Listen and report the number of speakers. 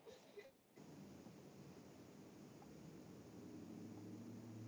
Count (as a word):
zero